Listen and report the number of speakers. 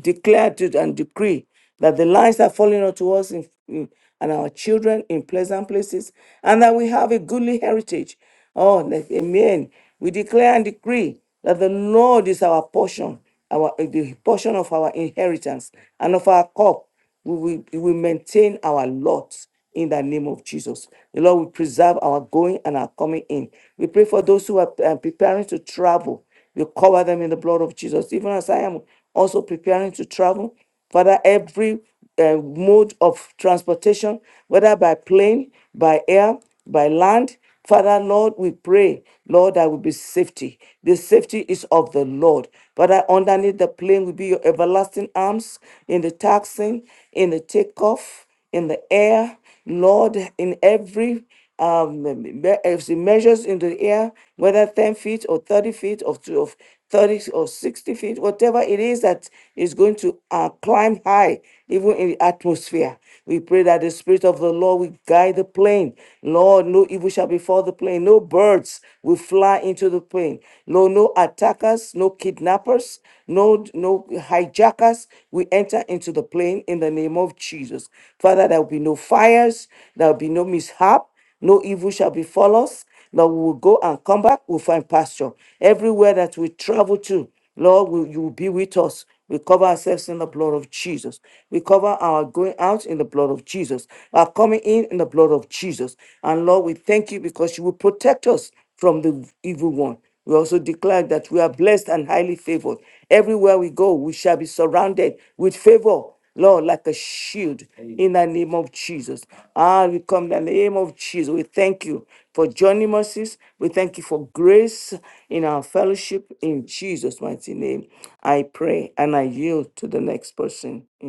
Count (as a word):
one